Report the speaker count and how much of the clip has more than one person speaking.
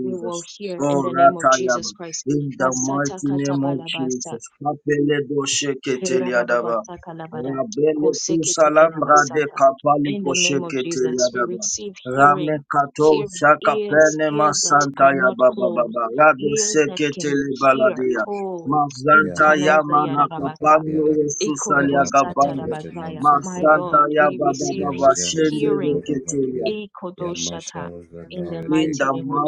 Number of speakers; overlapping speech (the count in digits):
3, about 75%